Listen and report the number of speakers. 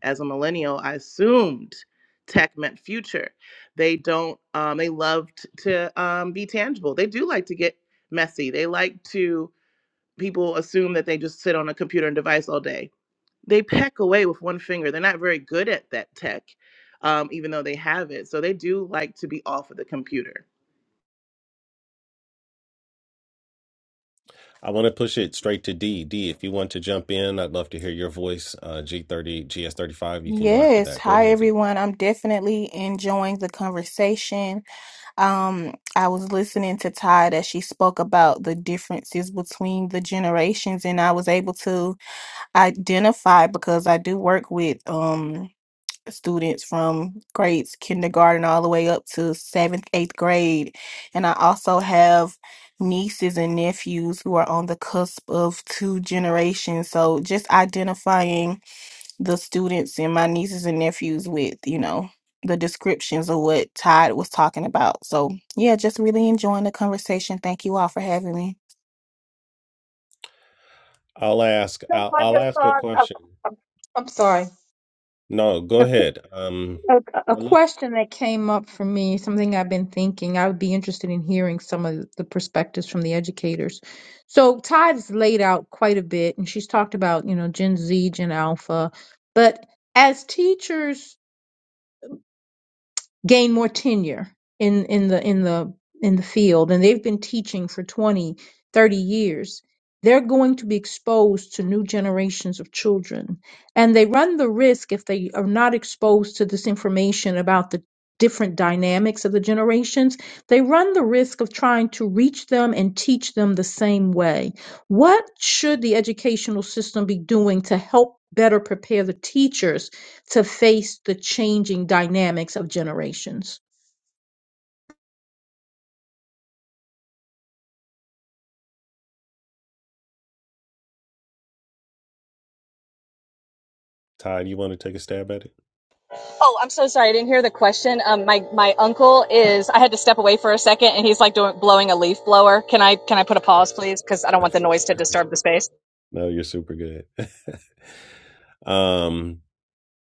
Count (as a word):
five